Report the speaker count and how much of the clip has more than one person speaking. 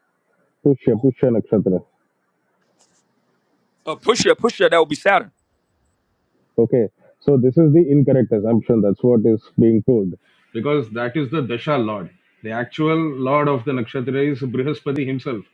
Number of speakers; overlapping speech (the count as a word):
two, no overlap